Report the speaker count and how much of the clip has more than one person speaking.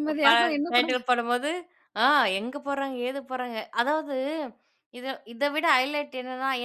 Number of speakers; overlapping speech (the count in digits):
2, about 6%